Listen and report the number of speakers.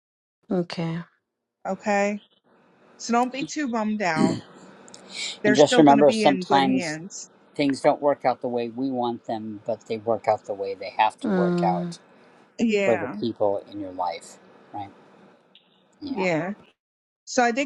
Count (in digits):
3